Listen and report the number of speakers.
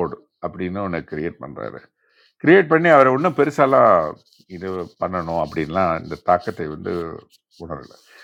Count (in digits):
1